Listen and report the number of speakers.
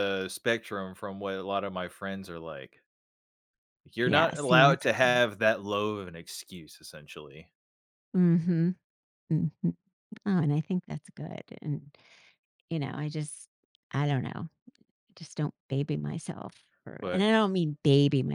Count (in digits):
2